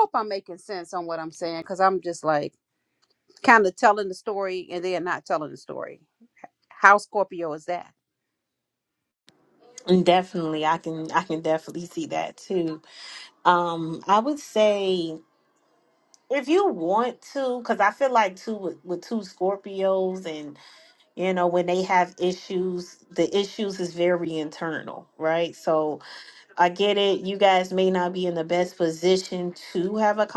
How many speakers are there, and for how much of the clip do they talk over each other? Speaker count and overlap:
two, no overlap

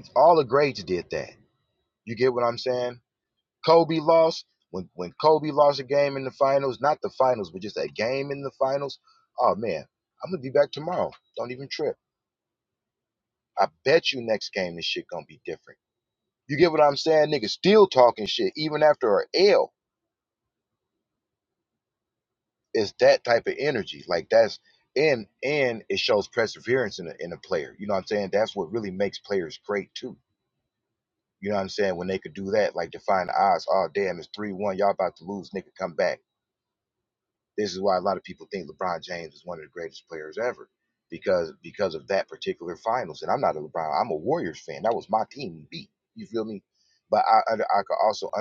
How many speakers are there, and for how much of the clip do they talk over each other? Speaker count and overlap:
one, no overlap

